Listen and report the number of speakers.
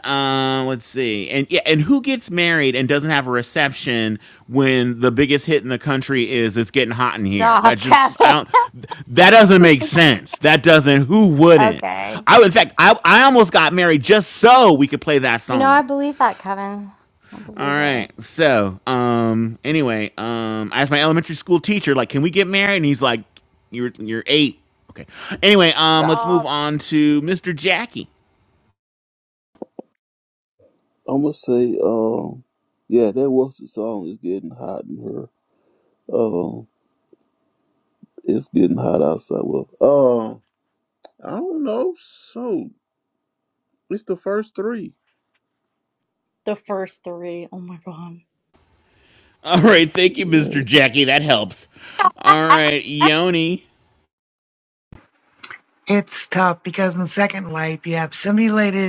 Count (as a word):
five